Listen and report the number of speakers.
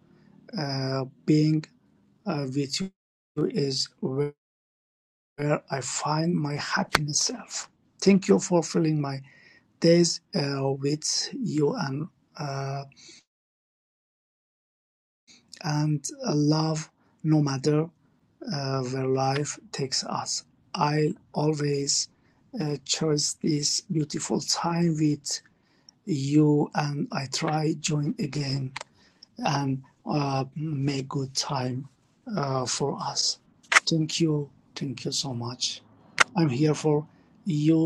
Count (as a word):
one